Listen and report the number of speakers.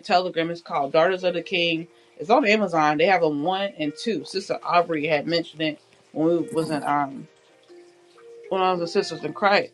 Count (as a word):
one